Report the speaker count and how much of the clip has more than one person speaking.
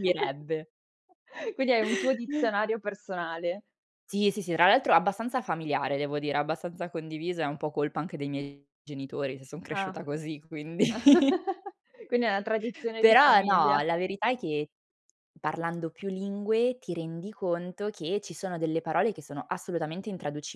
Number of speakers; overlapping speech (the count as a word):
two, about 5%